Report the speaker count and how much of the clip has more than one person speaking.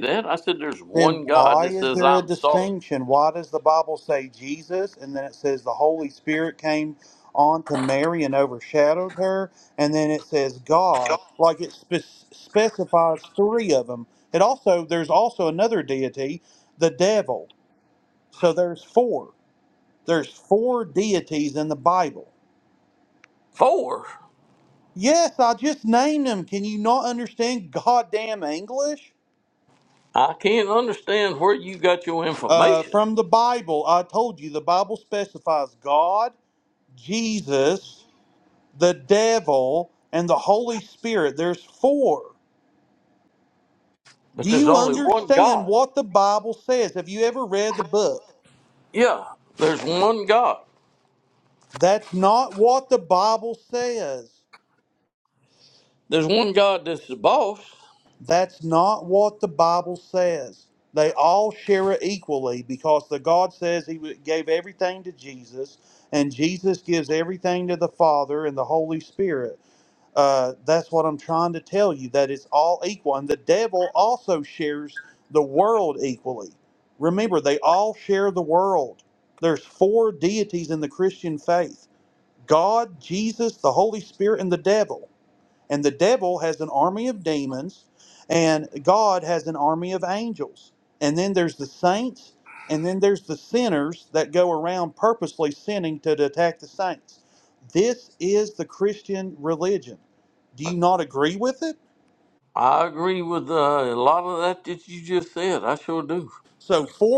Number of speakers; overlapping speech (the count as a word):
two, about 3%